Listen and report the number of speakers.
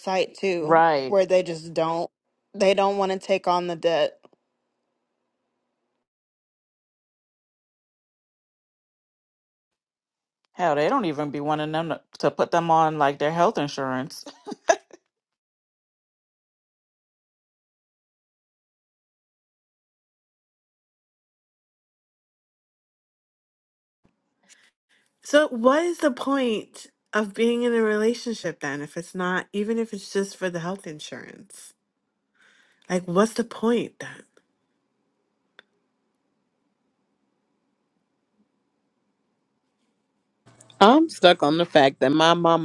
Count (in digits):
4